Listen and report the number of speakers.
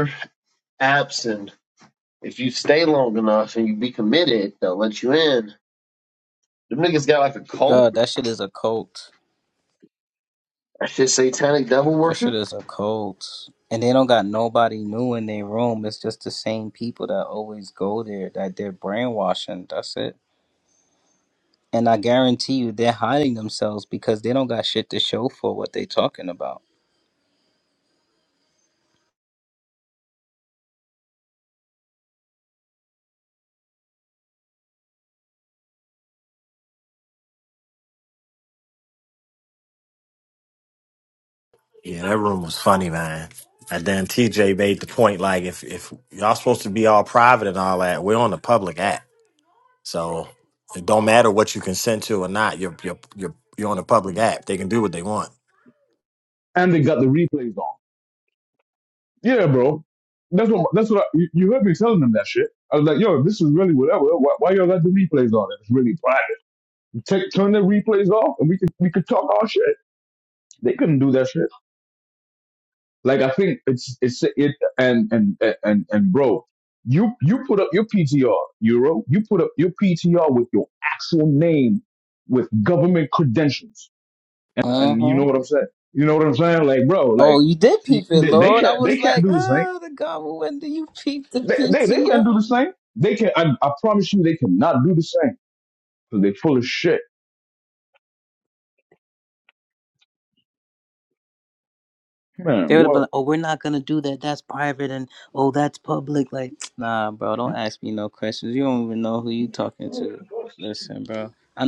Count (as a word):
four